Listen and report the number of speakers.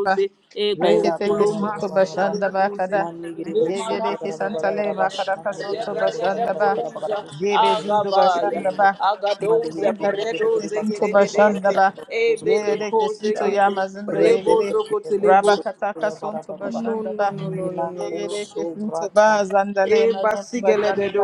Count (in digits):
3